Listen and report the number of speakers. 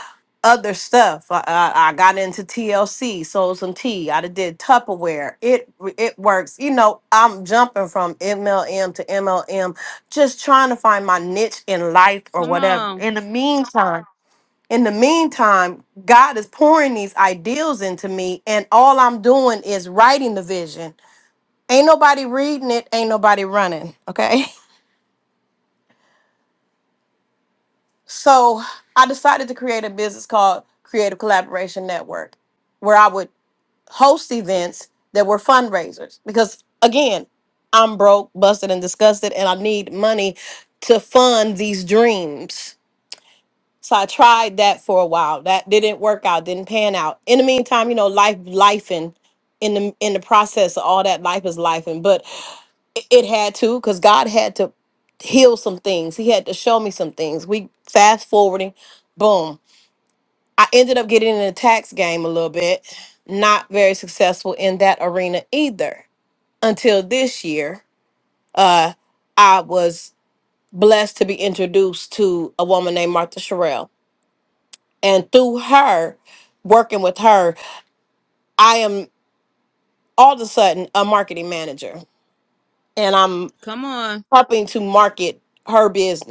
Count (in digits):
2